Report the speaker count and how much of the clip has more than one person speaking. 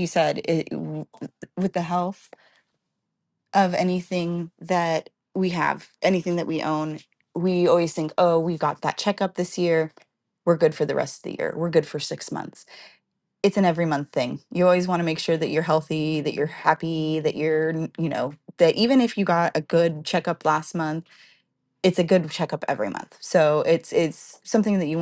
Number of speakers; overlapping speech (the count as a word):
one, no overlap